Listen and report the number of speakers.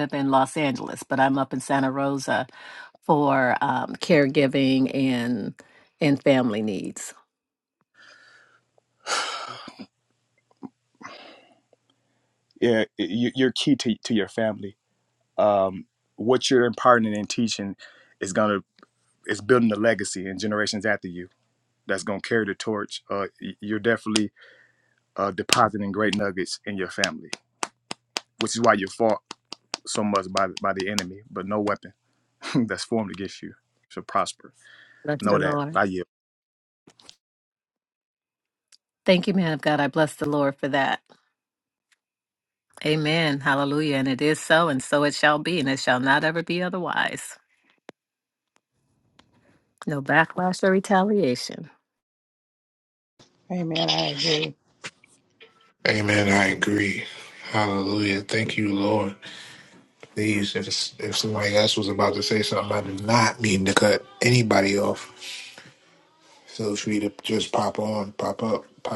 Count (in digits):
4